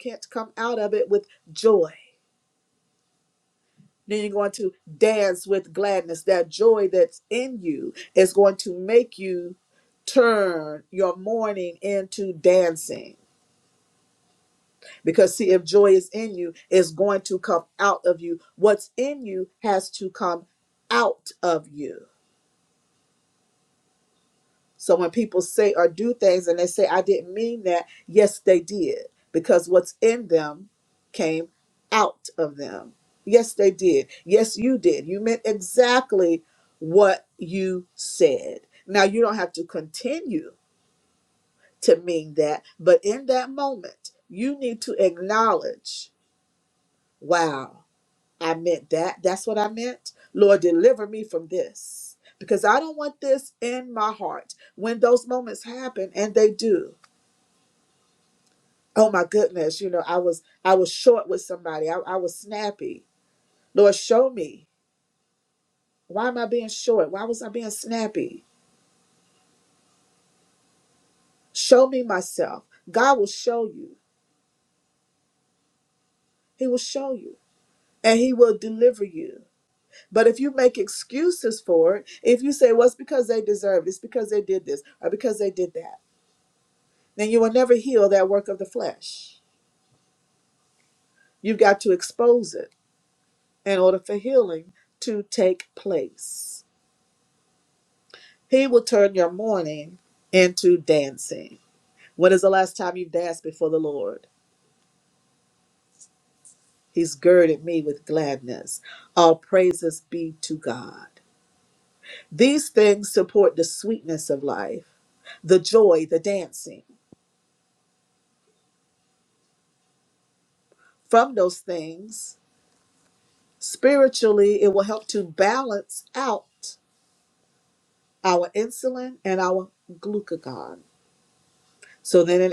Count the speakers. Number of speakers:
1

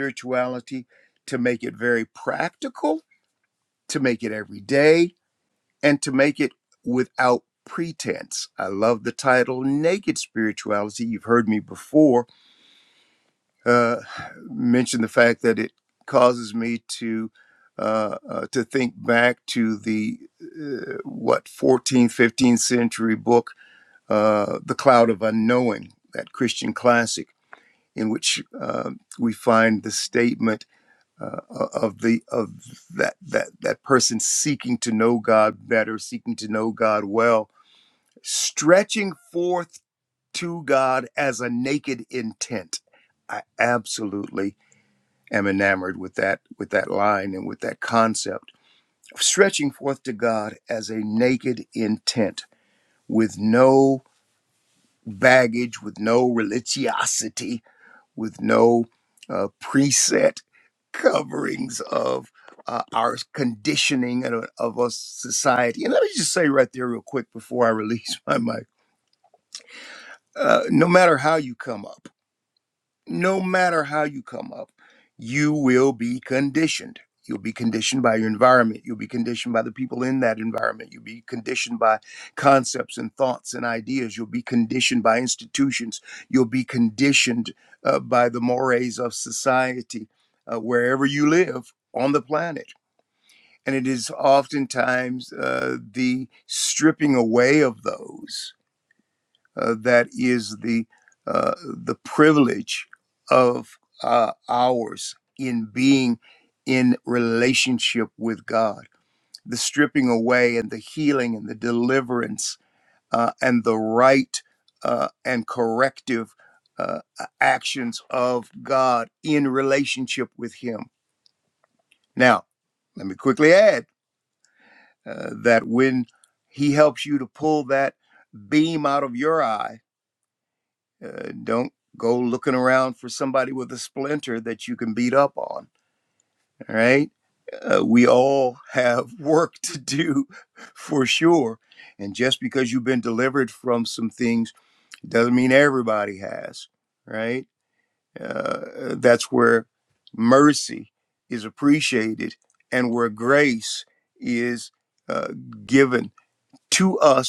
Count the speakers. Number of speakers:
1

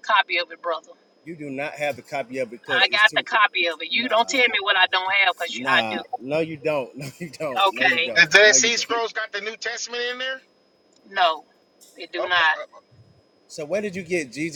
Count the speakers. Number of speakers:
3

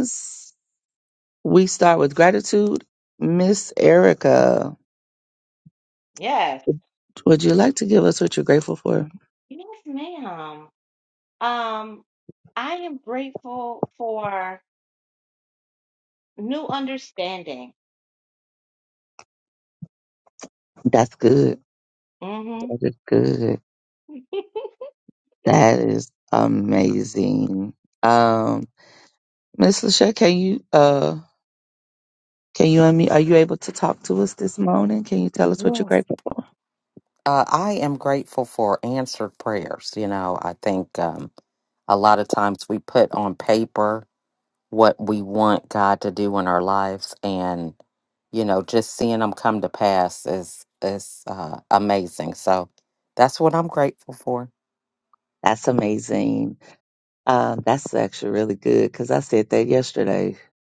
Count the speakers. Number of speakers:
3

